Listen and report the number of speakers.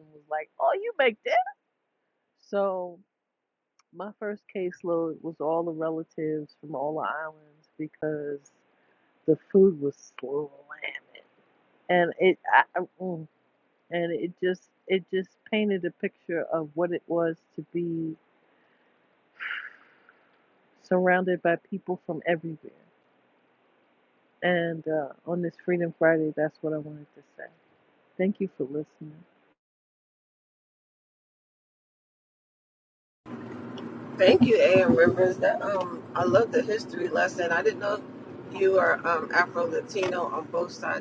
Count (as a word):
two